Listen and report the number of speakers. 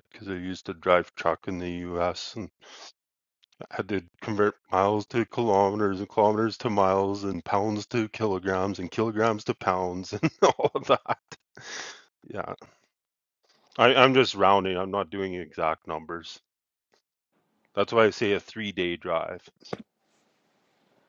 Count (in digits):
1